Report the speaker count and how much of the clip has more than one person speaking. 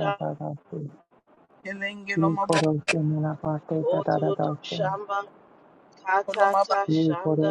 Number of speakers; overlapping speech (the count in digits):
3, about 35%